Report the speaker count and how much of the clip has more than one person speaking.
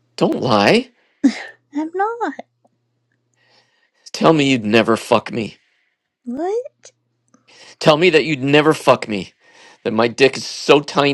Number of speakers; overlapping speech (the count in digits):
2, no overlap